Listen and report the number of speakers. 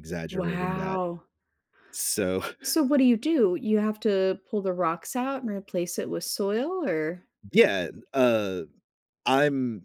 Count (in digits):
2